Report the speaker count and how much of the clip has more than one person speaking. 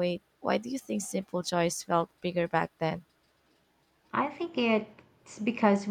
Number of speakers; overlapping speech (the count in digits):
2, no overlap